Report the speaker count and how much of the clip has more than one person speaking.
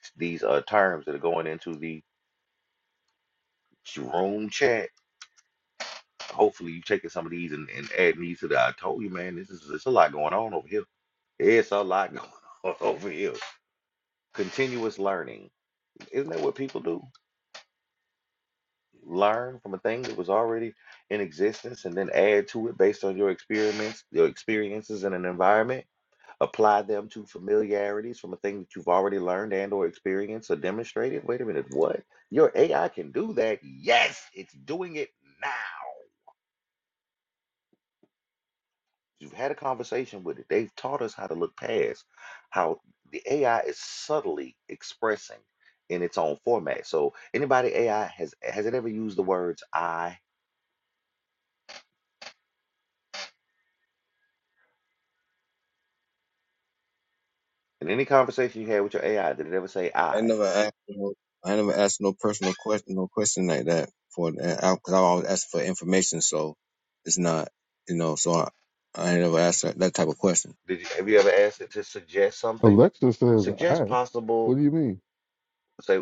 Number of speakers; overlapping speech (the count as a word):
three, about 1%